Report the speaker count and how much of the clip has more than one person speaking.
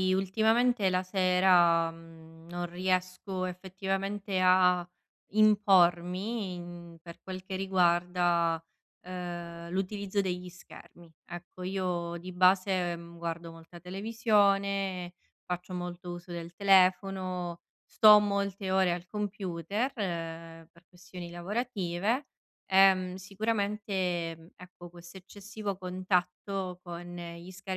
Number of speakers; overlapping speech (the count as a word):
one, no overlap